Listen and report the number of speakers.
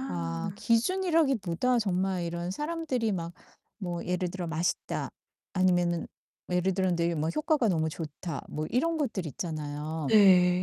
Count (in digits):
2